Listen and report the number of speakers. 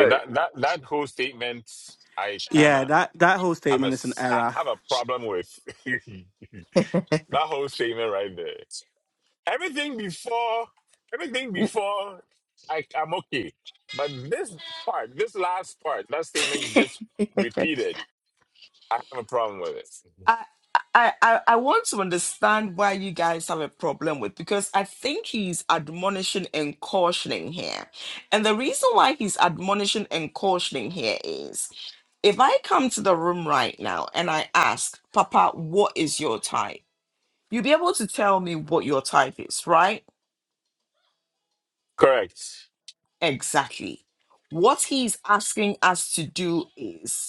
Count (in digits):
3